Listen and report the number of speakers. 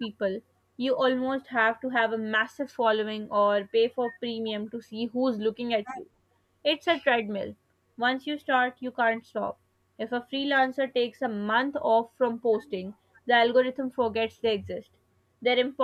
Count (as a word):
one